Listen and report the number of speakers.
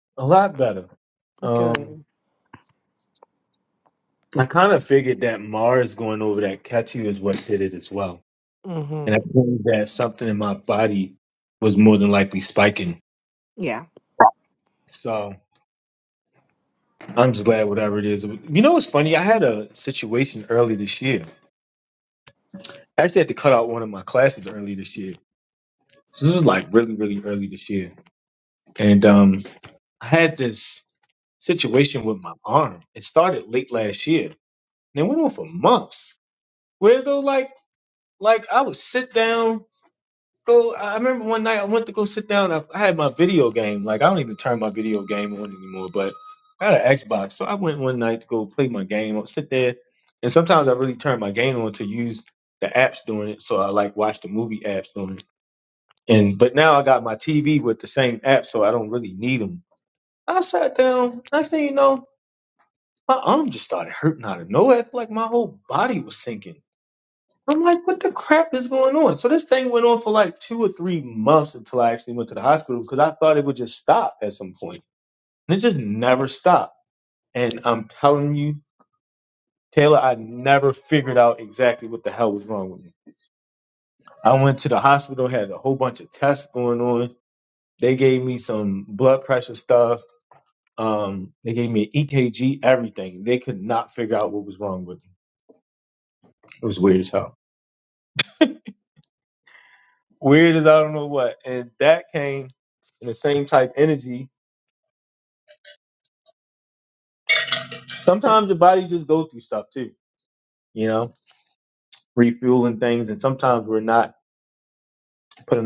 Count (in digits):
2